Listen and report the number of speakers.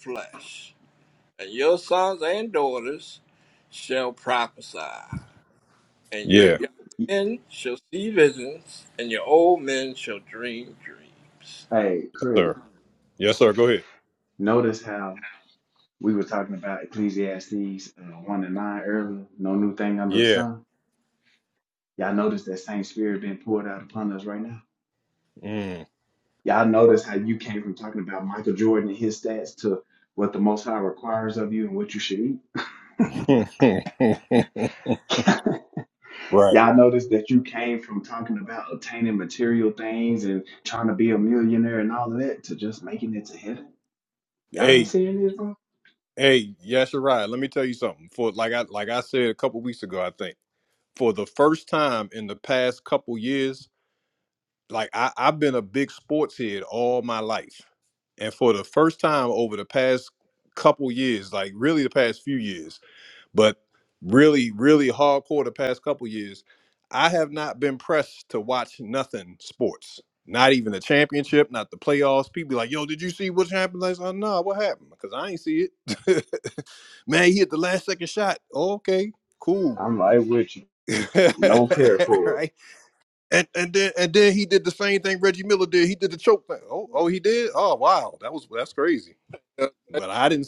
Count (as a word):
three